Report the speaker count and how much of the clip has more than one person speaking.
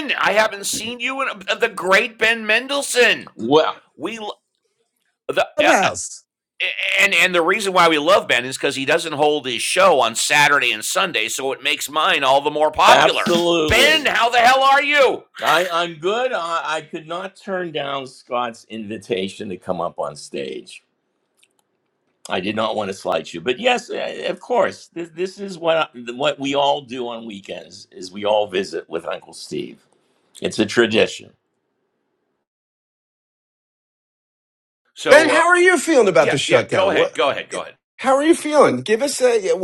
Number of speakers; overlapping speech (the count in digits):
3, about 5%